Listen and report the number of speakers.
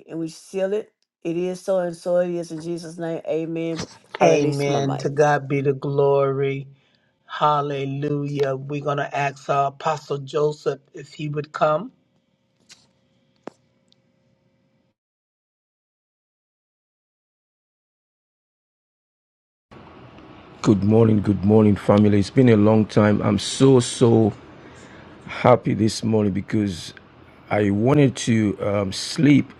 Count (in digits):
3